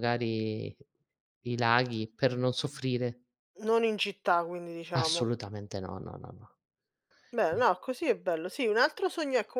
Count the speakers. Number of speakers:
2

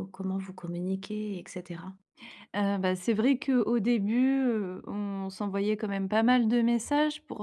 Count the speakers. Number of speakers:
2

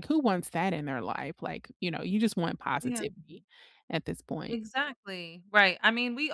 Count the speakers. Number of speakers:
2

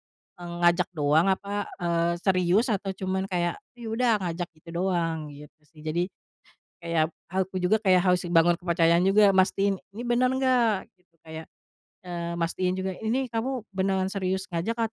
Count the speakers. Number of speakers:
1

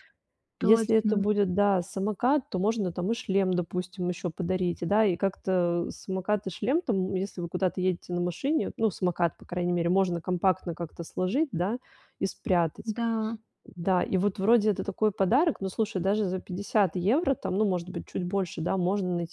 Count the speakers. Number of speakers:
2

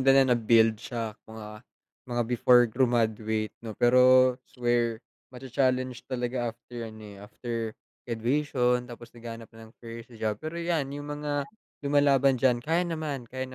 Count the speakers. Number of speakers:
1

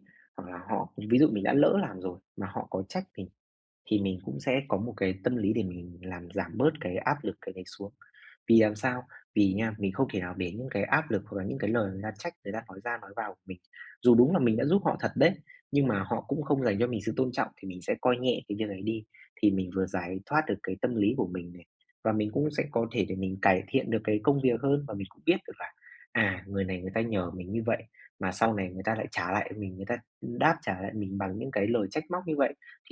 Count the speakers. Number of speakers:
1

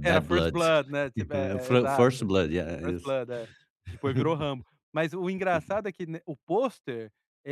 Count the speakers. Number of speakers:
2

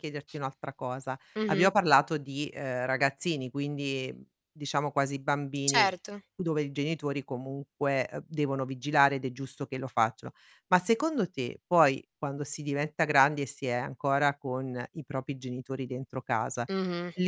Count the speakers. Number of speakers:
2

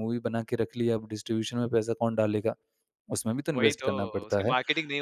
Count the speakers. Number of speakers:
2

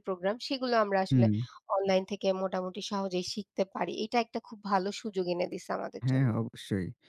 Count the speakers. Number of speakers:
2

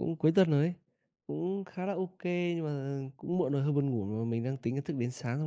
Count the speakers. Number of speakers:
1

